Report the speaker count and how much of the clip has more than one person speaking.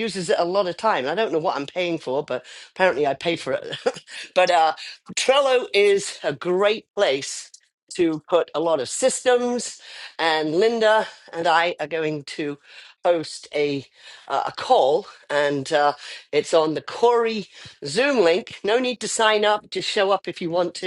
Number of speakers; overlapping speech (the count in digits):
1, no overlap